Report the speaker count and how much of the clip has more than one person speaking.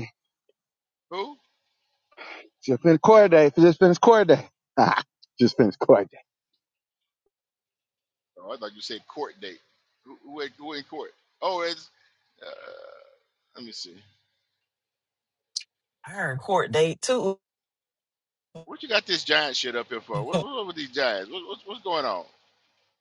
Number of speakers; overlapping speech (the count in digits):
3, about 1%